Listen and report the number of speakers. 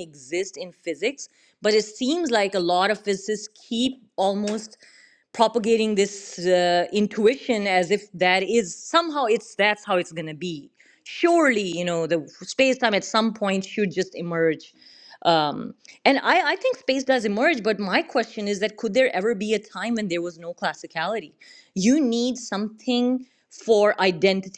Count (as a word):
one